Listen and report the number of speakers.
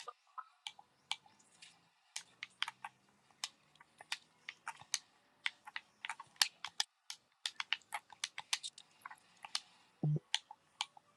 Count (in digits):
0